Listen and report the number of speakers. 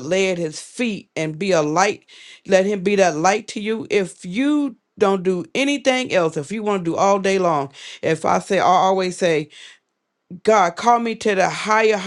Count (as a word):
one